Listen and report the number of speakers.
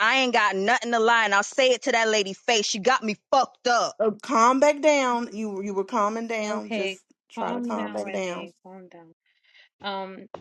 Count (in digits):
3